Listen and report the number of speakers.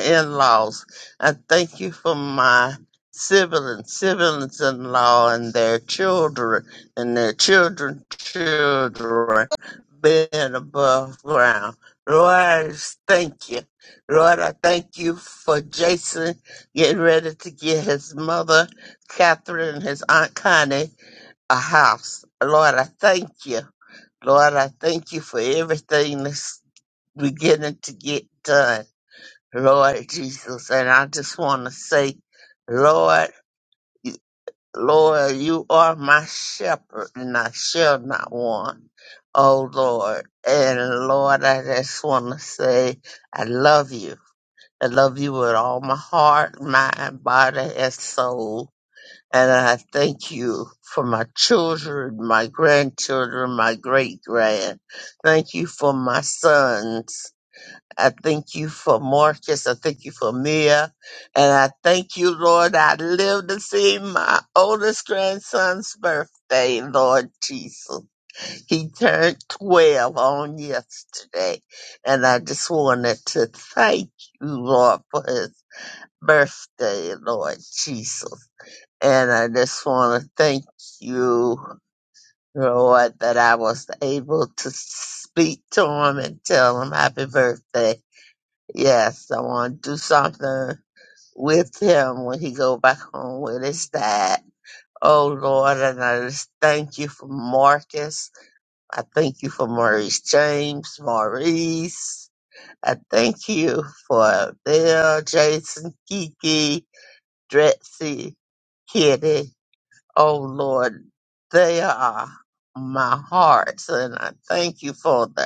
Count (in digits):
1